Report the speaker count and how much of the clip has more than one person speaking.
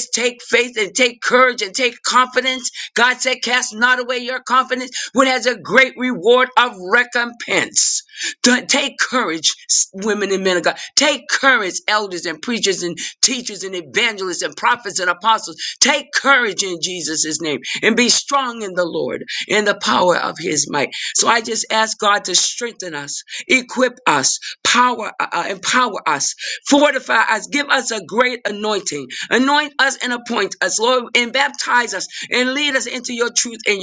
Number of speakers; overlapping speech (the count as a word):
one, no overlap